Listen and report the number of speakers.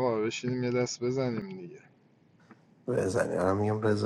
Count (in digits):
2